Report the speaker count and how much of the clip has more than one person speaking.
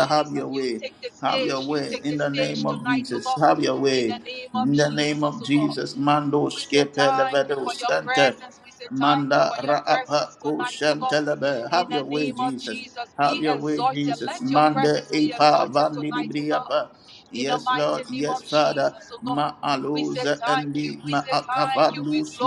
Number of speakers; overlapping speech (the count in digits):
2, about 78%